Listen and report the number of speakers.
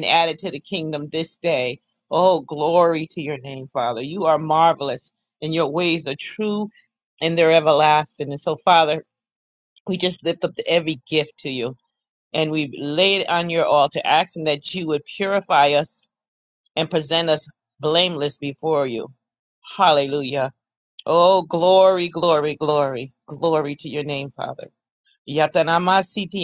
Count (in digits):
1